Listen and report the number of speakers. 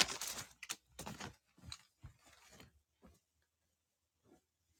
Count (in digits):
0